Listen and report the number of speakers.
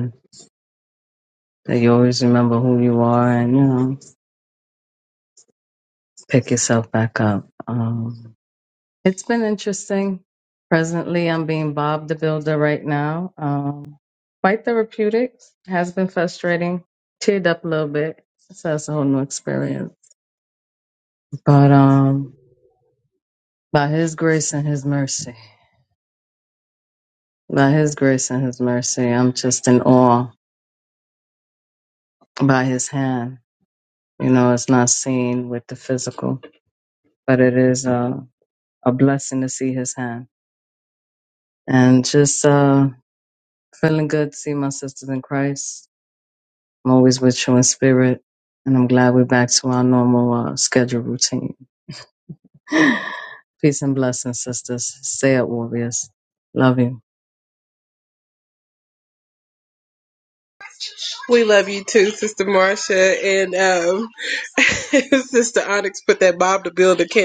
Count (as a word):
two